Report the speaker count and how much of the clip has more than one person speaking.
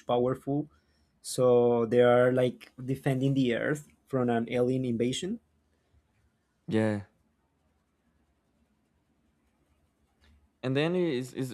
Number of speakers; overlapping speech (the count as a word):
two, no overlap